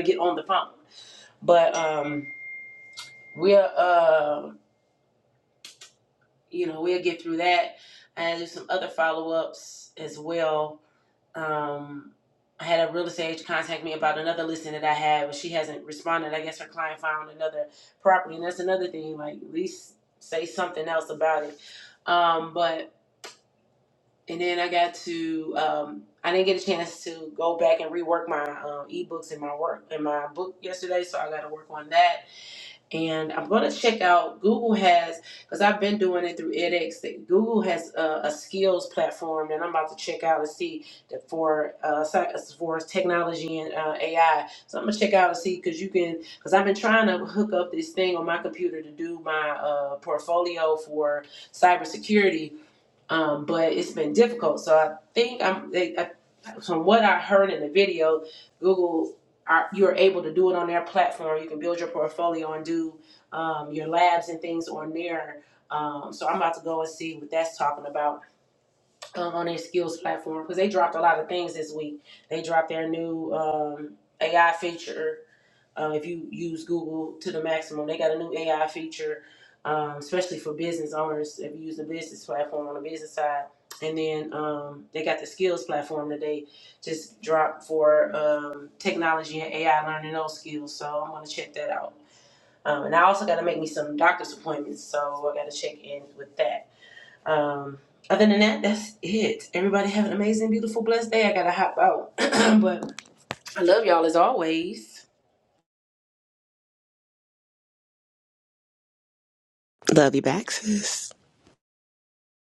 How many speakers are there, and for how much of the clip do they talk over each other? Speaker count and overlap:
two, no overlap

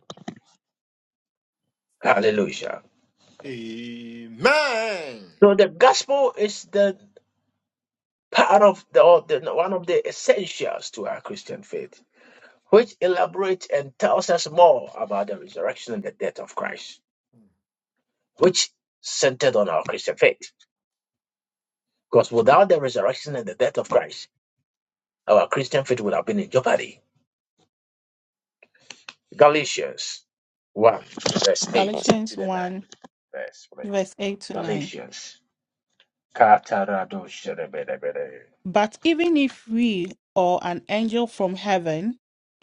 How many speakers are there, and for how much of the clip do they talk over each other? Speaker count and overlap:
three, about 2%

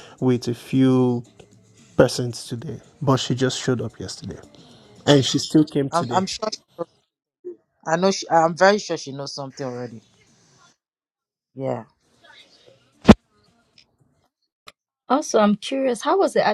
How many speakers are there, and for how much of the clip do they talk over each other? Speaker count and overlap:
three, about 2%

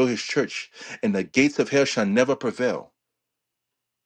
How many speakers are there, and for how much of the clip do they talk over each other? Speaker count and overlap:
one, no overlap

